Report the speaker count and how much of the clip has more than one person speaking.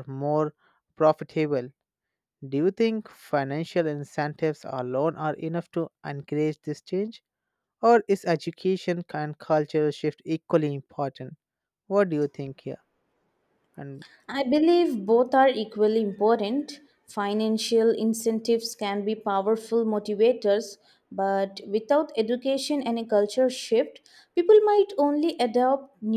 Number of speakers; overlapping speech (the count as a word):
two, no overlap